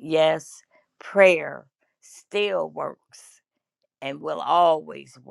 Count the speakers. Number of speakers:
1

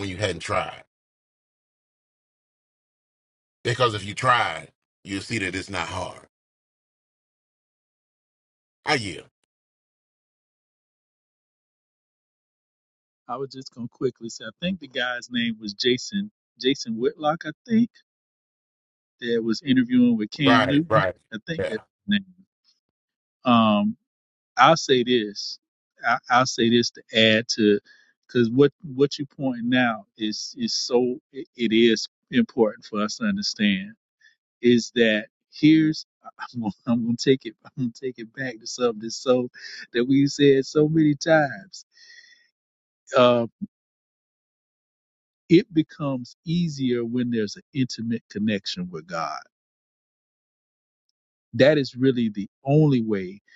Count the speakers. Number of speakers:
2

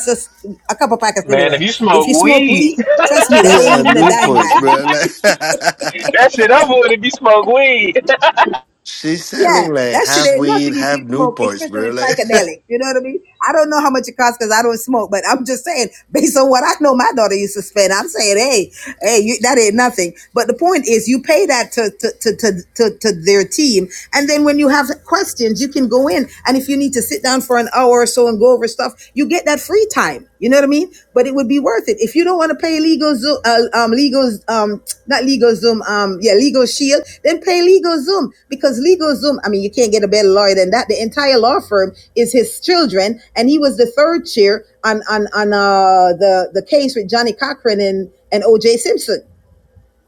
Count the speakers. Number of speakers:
3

